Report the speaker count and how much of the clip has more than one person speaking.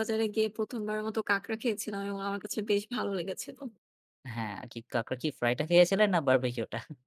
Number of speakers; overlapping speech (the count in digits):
2, no overlap